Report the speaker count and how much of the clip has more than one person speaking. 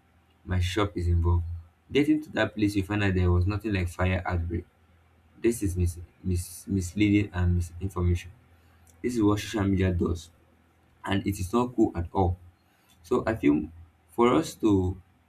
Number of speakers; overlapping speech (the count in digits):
1, no overlap